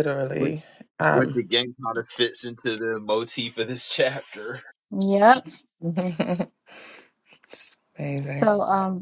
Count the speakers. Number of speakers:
3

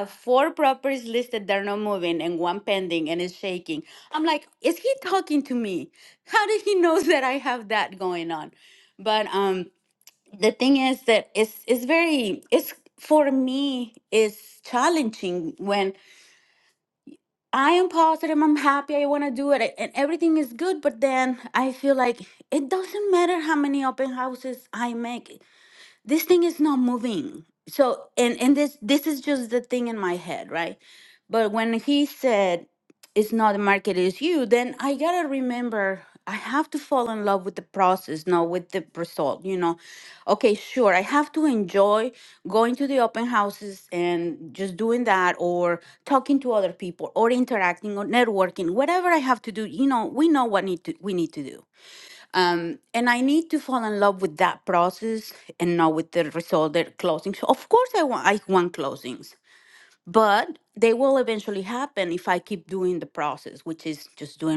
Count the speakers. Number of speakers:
1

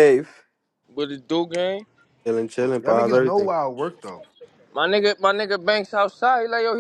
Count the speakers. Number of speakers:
3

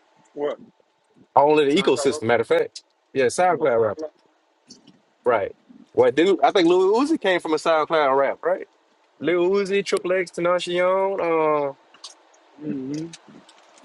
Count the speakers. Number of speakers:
2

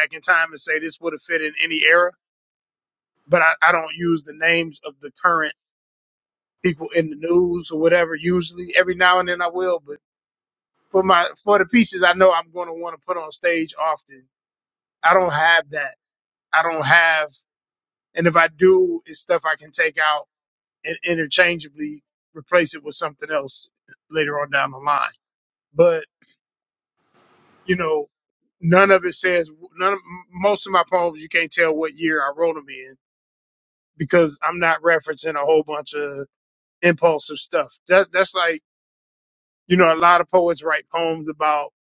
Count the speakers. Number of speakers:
1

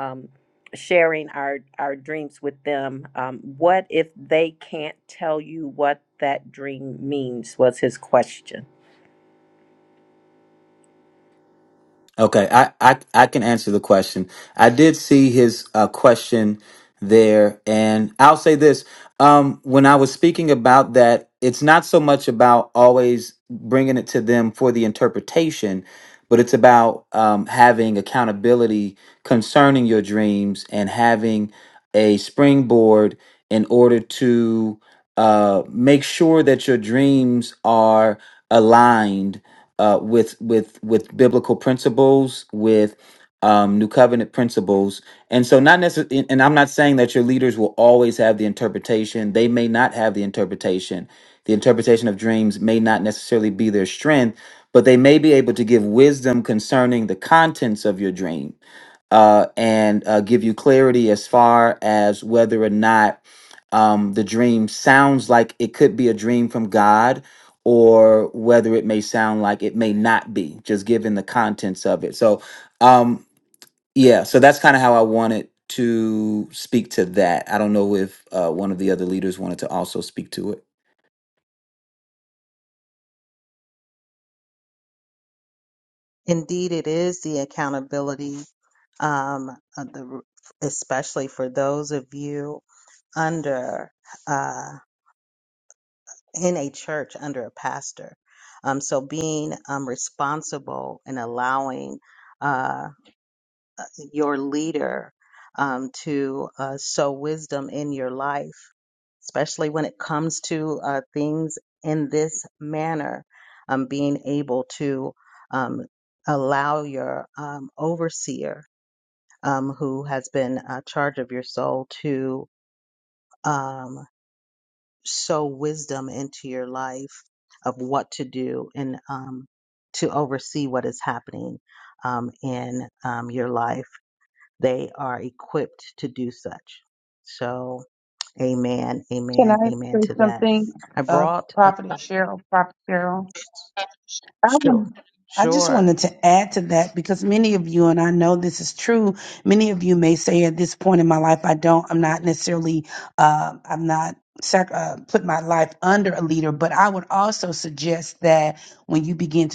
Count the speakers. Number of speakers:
4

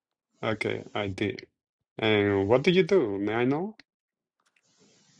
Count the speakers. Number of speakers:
1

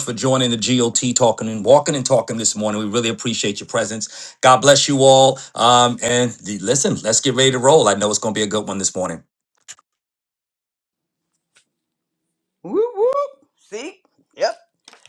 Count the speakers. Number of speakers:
2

